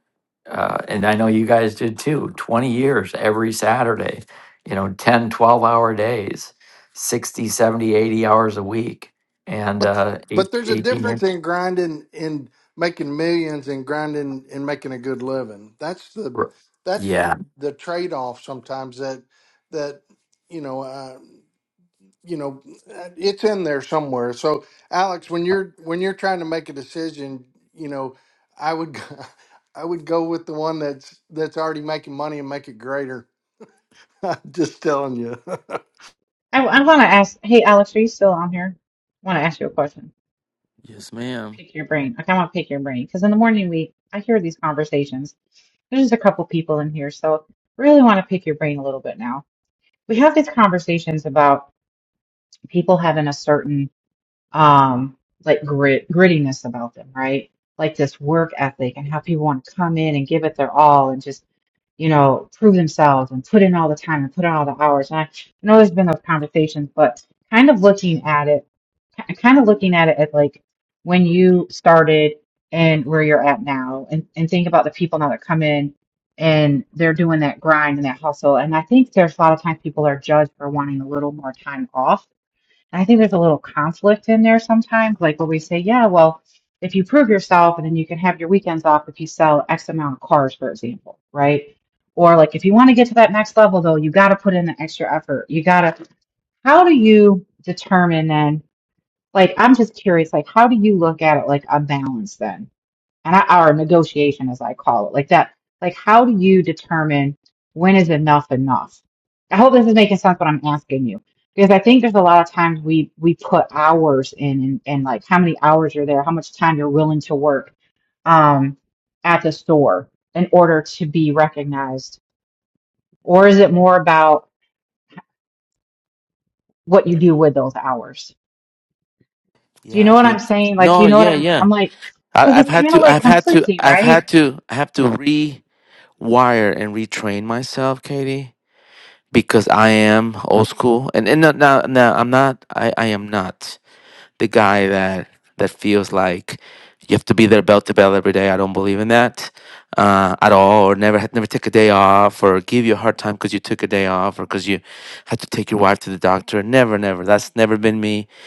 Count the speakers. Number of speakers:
4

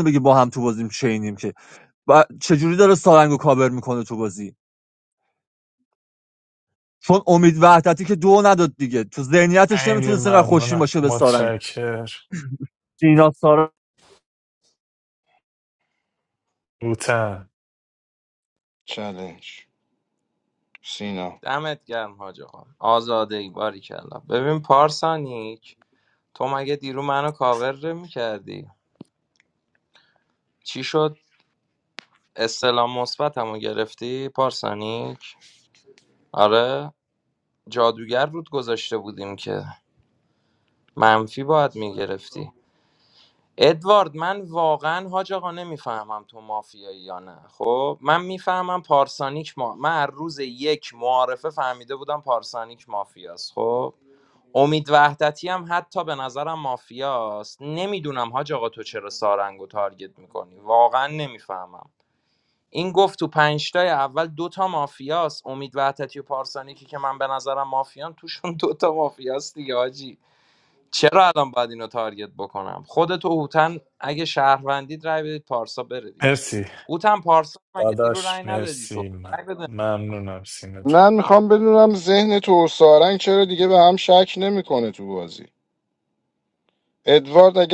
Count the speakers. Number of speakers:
4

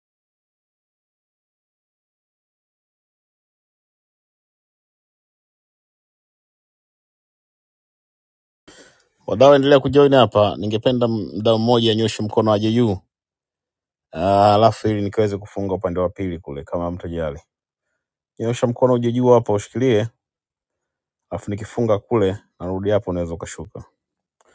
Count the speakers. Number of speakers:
1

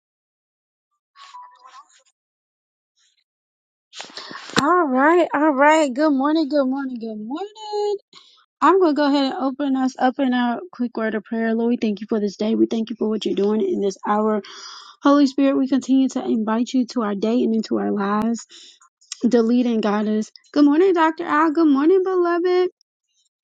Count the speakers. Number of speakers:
1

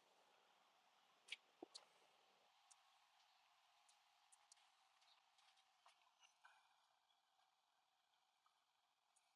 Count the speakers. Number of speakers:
0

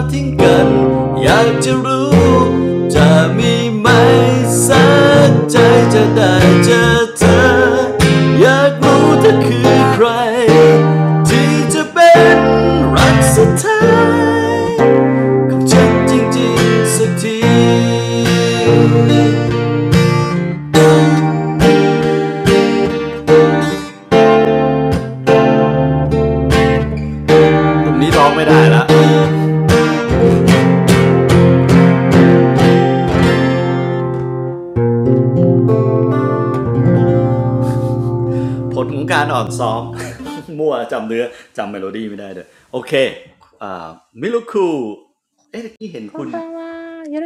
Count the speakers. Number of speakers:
2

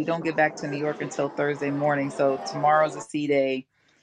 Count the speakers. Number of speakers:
1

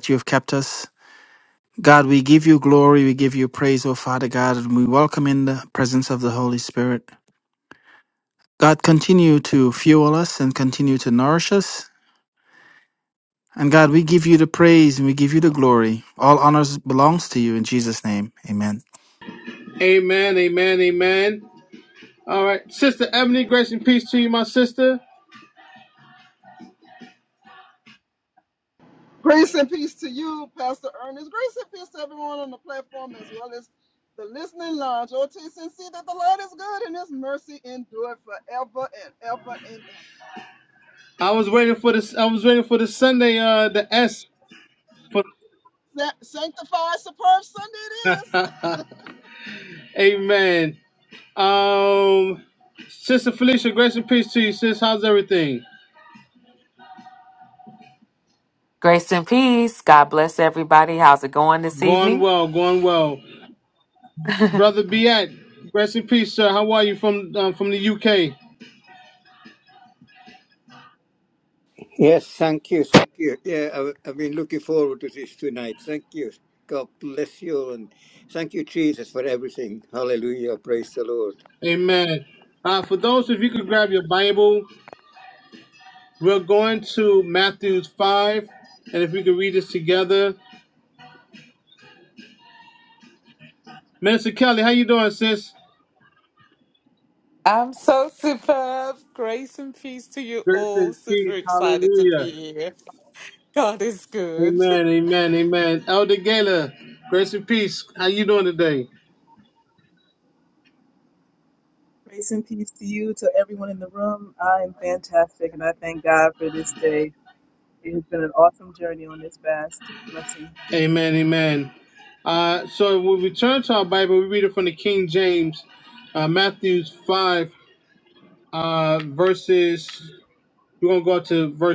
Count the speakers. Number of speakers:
7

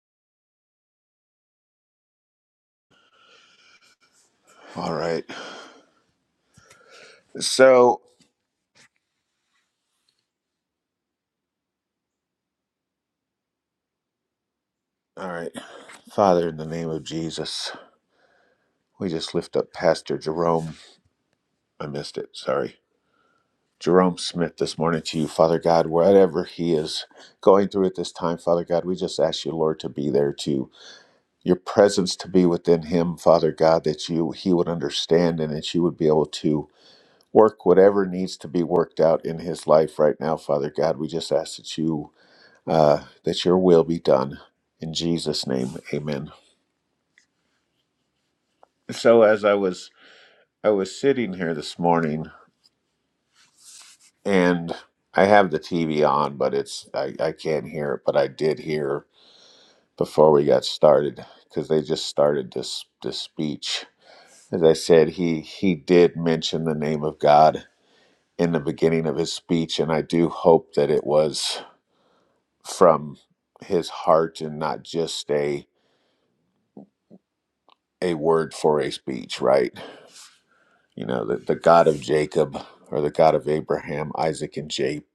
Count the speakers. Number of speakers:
1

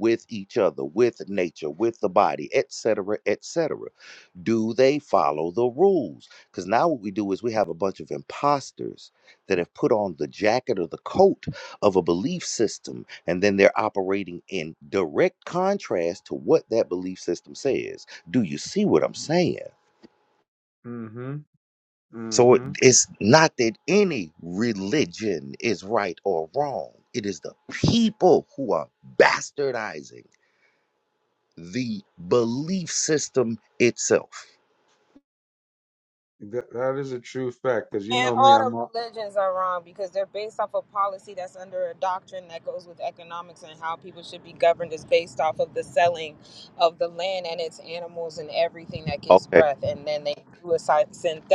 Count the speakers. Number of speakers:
3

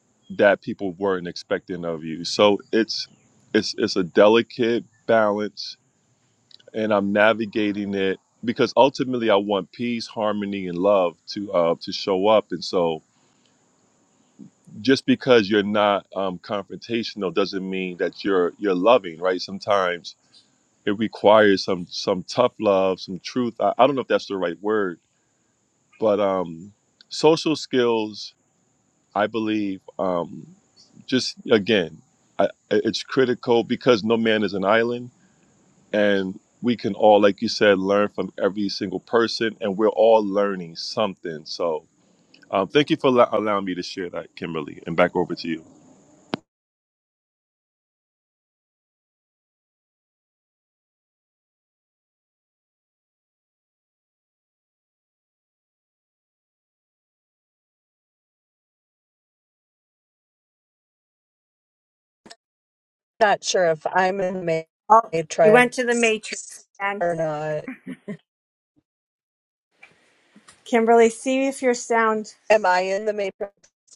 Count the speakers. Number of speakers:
3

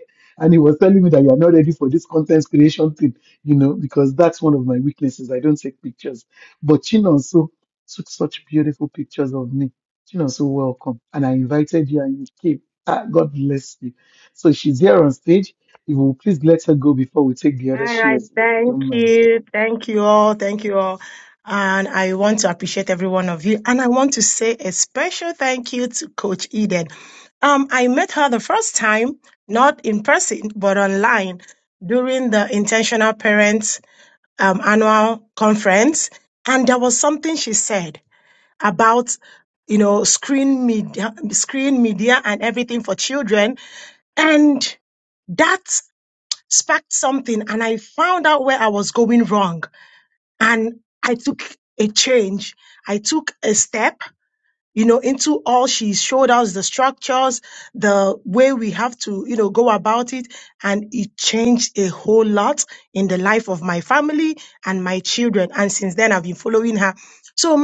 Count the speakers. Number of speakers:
2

